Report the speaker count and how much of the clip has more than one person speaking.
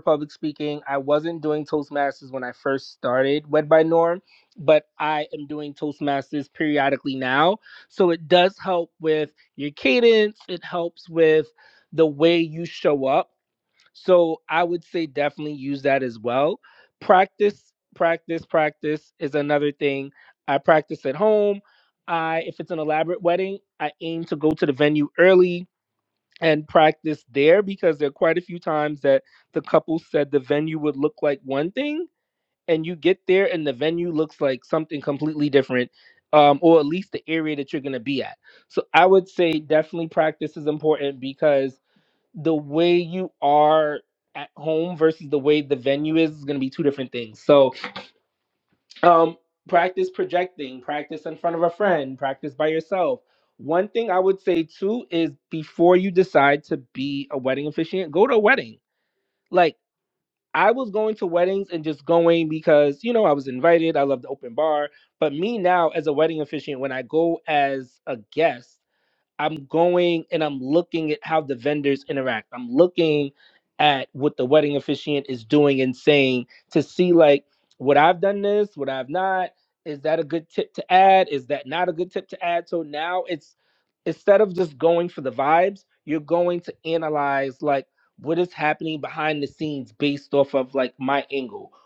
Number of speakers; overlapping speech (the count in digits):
1, no overlap